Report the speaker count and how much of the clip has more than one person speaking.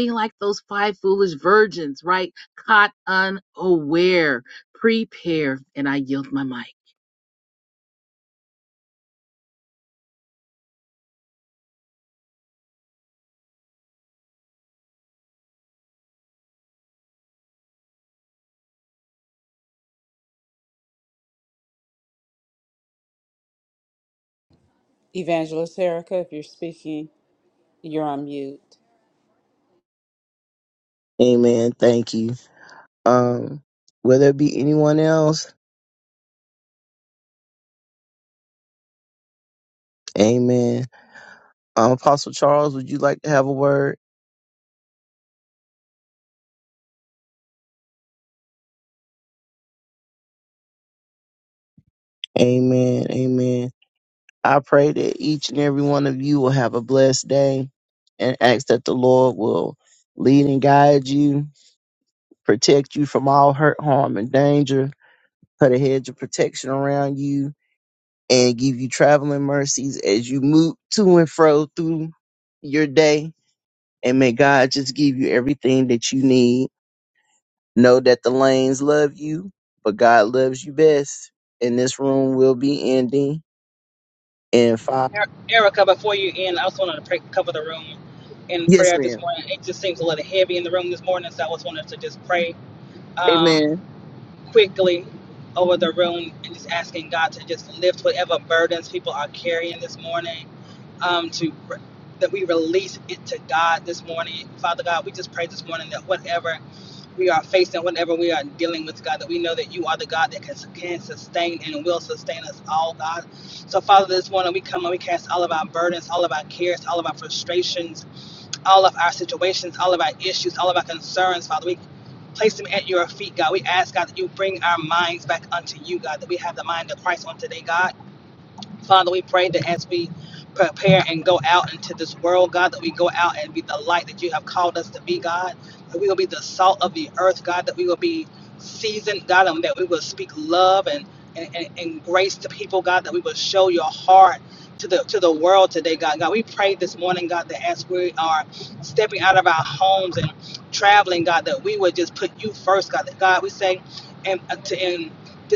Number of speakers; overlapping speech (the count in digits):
4, about 1%